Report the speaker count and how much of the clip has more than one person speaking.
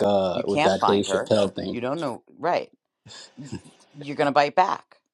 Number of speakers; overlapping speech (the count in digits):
2, about 19%